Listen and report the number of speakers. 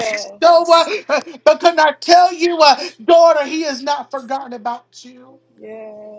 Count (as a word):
two